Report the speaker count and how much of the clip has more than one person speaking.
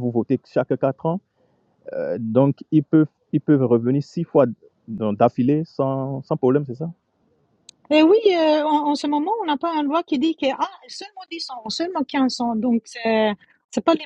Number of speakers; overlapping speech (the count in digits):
2, no overlap